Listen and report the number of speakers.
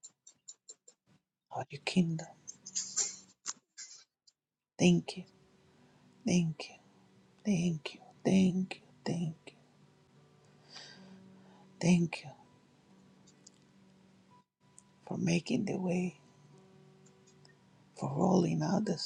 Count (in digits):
1